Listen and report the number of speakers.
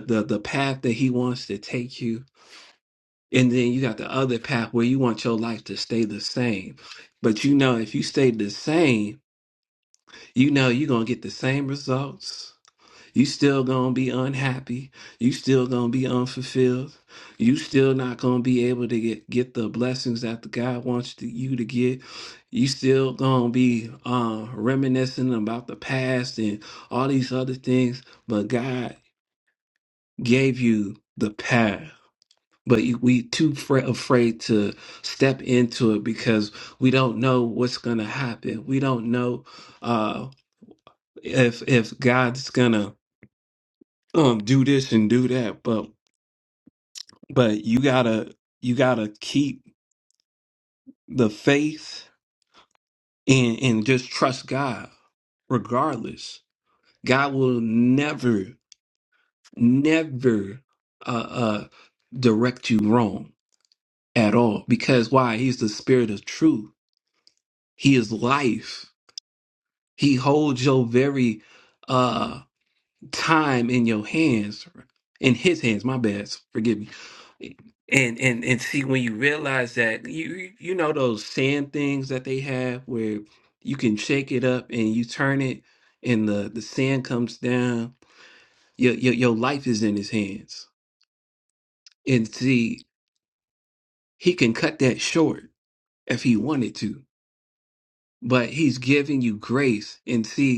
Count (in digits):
1